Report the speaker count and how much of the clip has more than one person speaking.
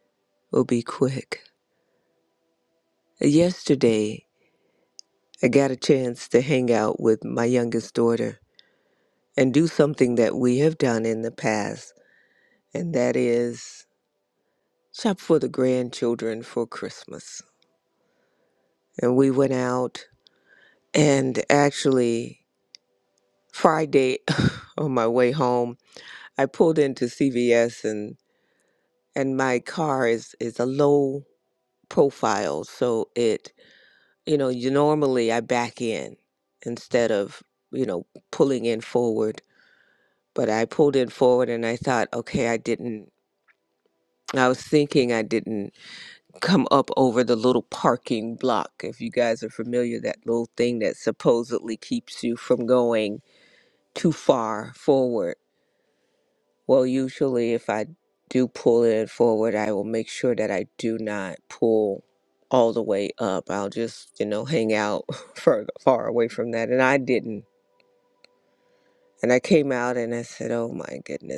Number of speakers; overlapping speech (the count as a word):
one, no overlap